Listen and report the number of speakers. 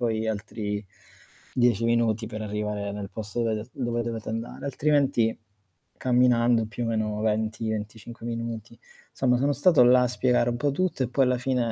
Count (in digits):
1